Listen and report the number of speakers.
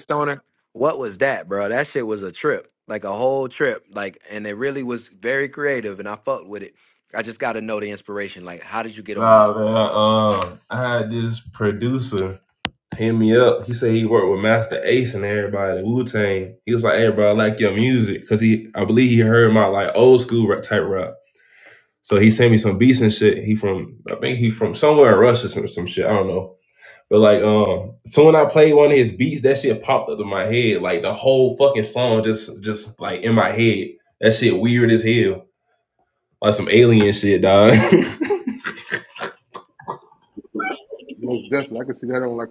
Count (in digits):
3